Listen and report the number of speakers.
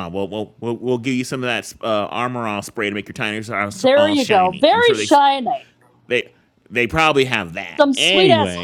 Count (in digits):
2